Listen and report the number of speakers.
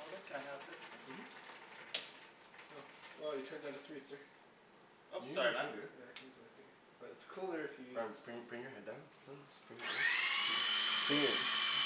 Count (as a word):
three